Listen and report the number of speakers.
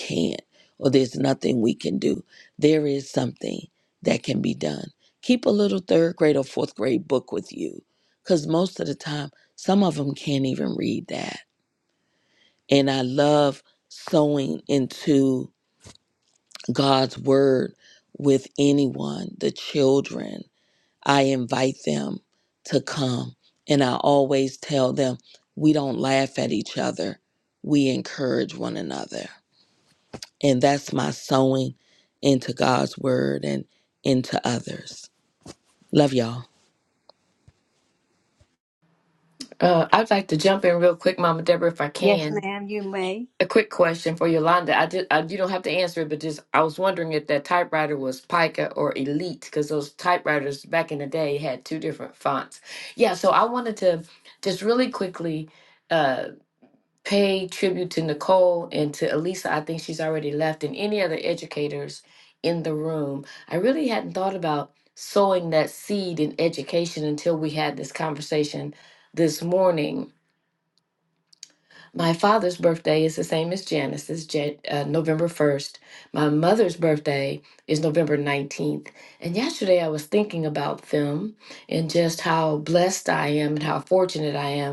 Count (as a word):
three